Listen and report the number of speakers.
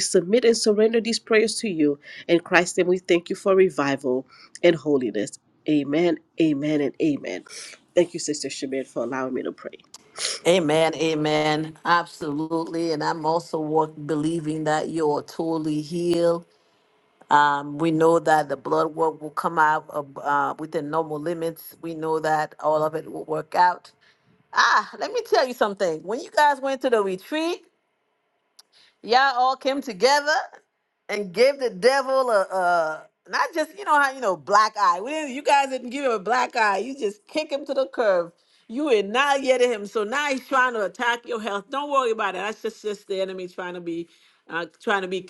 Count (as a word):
two